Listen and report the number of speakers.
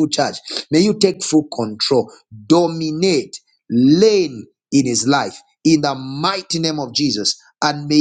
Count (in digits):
1